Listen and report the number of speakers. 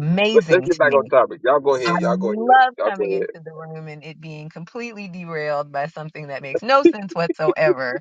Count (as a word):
two